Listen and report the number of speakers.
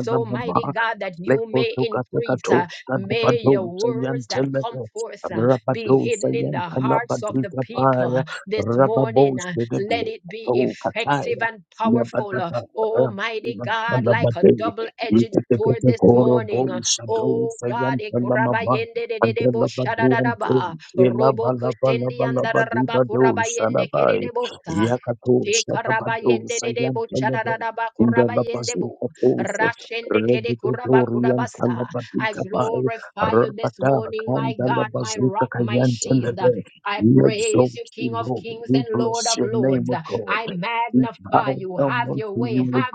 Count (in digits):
2